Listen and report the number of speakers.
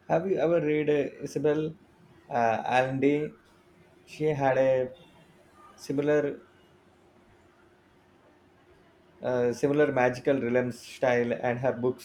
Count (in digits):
1